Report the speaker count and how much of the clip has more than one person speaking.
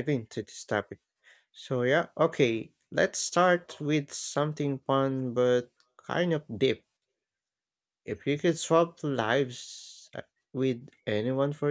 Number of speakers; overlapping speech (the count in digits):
1, no overlap